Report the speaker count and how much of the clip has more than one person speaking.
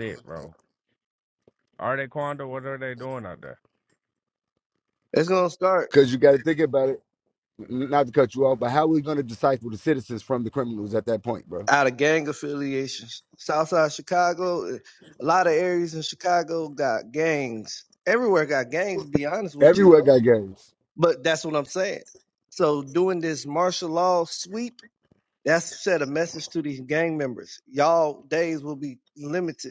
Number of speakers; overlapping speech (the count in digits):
3, about 2%